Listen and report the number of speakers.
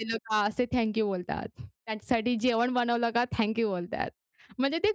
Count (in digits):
1